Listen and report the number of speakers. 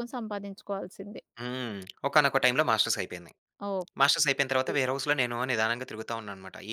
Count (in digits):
2